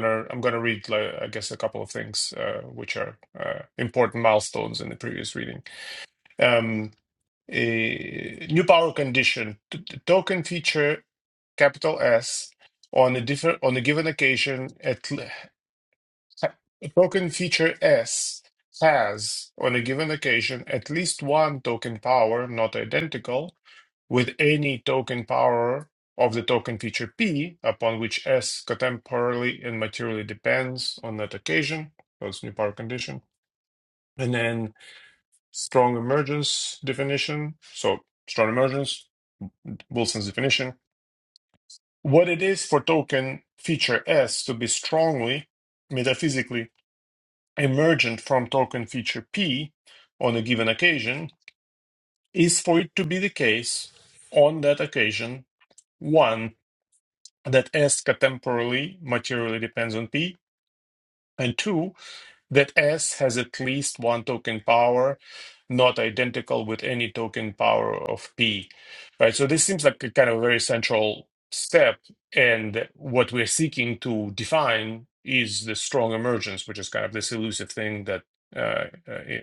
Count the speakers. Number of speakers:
1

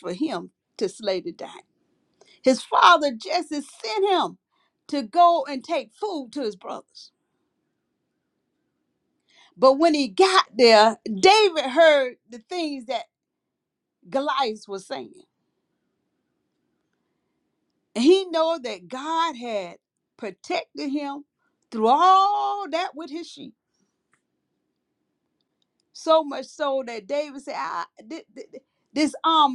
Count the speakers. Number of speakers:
1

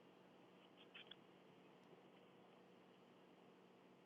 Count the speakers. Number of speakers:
0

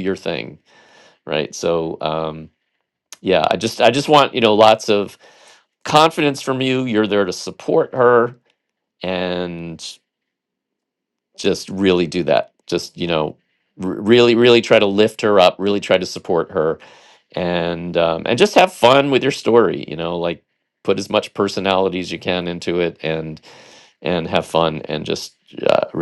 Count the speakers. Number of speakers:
1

